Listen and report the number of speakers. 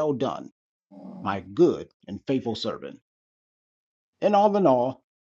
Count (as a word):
one